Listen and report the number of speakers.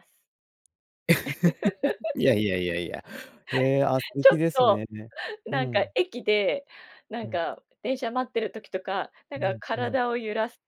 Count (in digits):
2